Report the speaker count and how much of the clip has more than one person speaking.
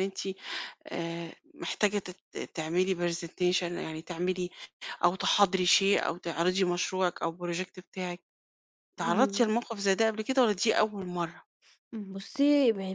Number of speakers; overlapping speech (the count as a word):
two, about 4%